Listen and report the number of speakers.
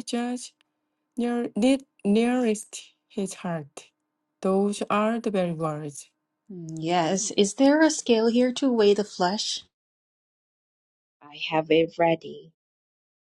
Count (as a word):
three